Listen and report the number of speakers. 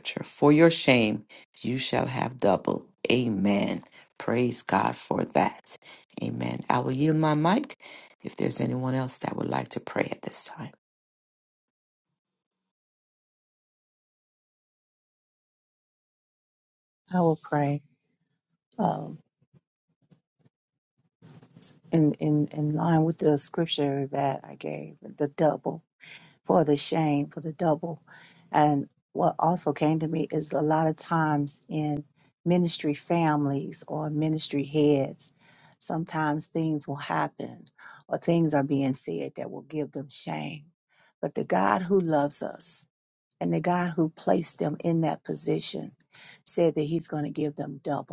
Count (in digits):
2